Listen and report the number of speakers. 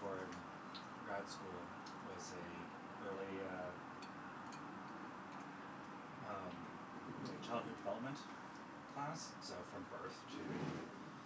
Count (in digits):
1